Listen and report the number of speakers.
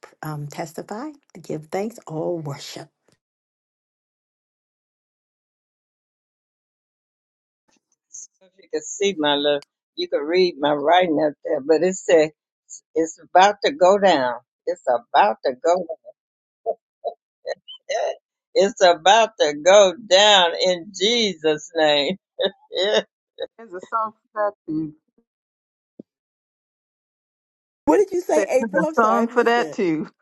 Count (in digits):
3